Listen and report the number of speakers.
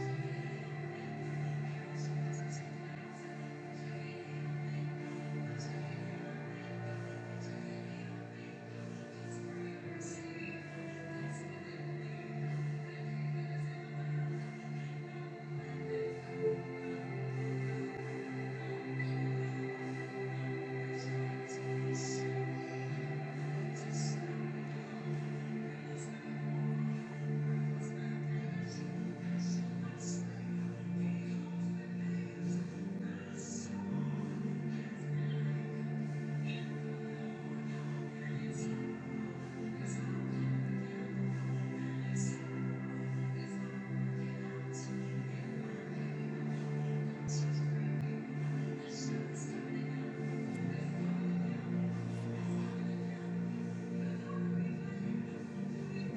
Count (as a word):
zero